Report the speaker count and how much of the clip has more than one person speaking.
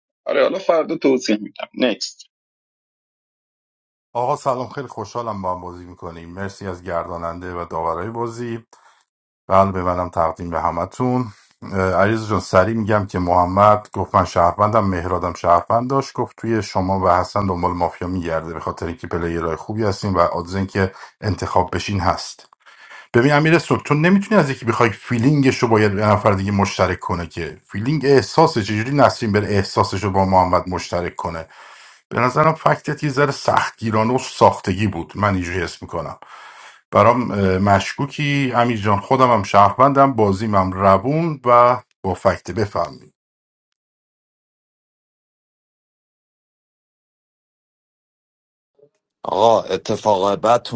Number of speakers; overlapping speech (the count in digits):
3, no overlap